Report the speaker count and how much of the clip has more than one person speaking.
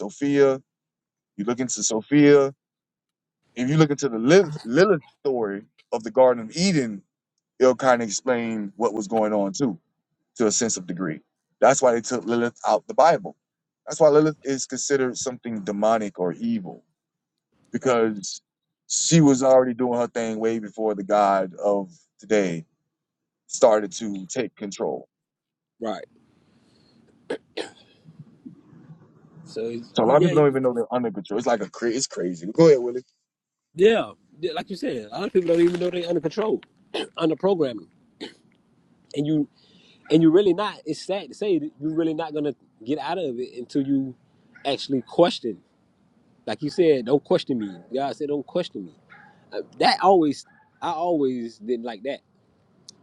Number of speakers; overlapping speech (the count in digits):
2, about 1%